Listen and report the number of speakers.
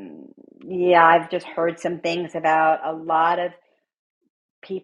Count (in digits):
1